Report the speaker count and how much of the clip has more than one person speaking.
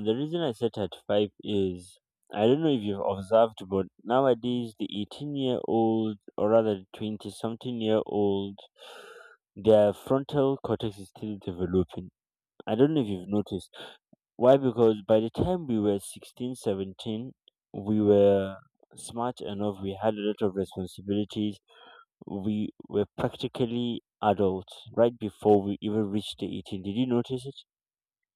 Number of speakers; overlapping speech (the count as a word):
one, no overlap